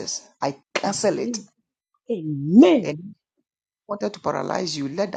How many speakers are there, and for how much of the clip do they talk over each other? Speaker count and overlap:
2, about 14%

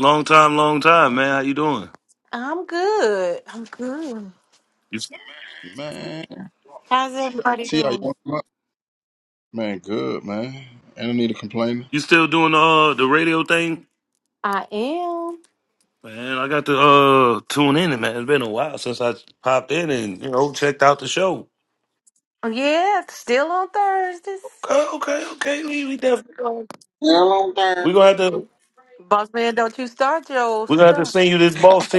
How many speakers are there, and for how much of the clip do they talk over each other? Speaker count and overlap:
3, about 4%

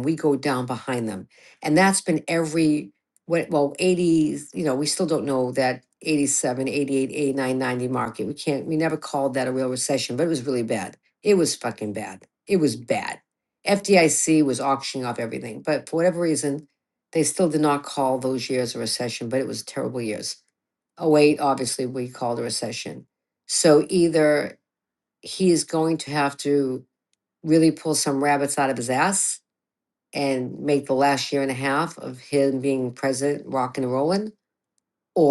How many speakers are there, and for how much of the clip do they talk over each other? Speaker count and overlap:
1, no overlap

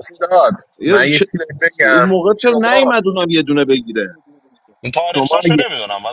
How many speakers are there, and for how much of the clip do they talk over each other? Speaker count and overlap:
3, about 34%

